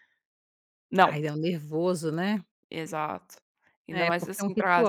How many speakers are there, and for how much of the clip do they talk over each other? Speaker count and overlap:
2, about 23%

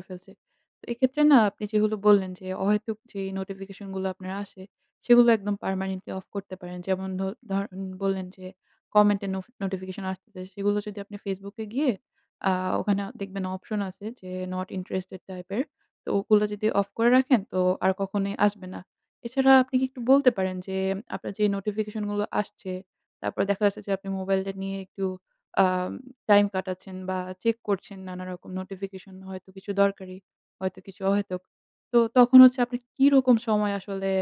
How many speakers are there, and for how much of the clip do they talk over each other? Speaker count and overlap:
1, no overlap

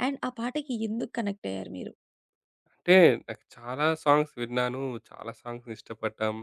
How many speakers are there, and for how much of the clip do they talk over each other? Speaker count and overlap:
2, no overlap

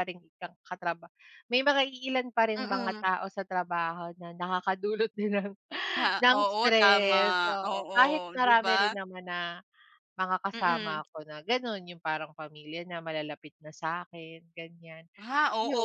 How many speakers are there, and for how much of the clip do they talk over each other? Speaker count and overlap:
2, about 24%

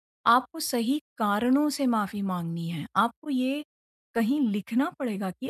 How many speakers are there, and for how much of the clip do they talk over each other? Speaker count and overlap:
1, no overlap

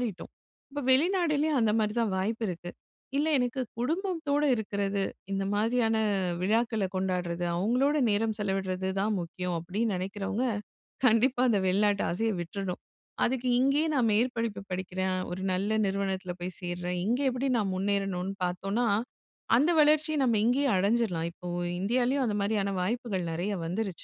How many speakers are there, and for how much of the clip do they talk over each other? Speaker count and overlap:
1, no overlap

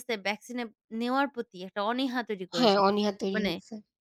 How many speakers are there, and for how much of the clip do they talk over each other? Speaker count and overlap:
2, about 13%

